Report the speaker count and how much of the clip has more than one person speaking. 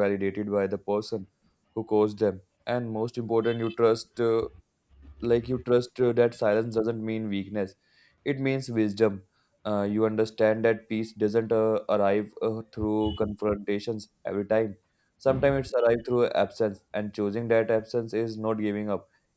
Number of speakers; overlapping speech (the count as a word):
one, no overlap